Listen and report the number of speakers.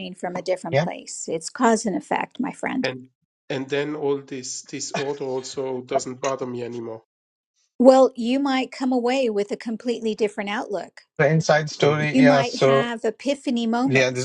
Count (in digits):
3